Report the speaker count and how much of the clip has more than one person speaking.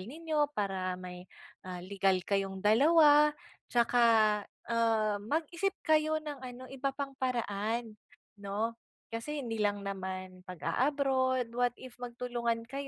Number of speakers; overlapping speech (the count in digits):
1, no overlap